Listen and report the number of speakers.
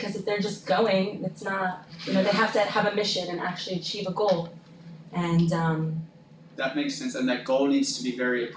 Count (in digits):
2